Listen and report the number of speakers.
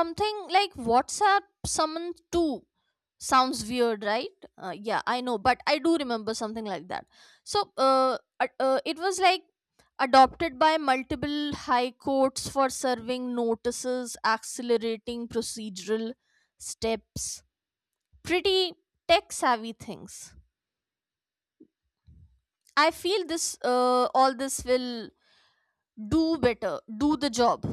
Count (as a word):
one